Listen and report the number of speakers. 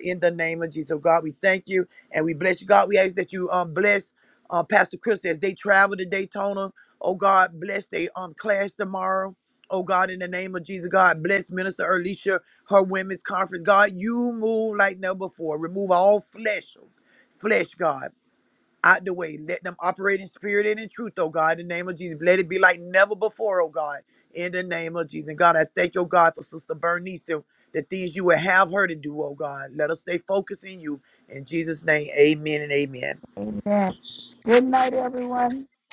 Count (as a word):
two